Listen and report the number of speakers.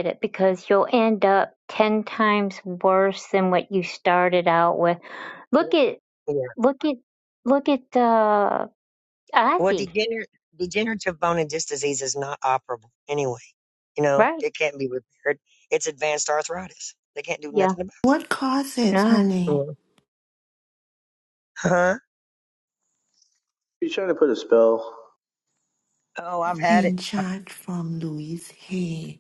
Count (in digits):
4